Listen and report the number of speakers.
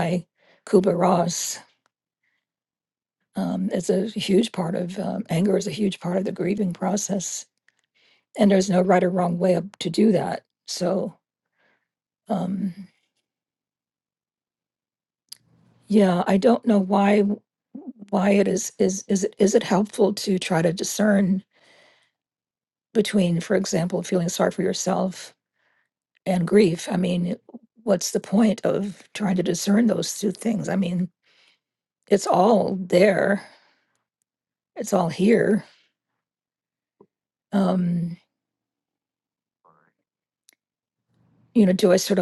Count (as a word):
one